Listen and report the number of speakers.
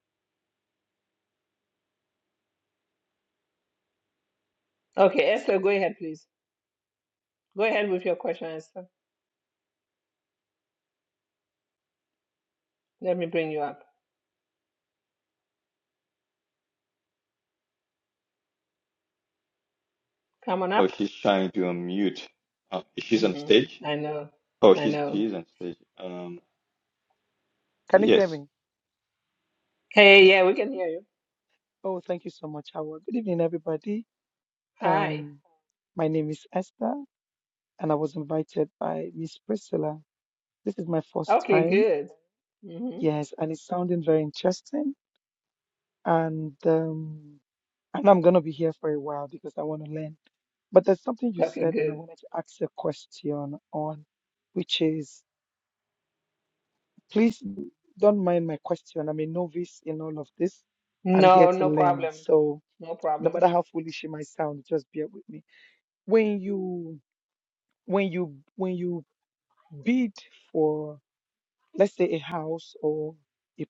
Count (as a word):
three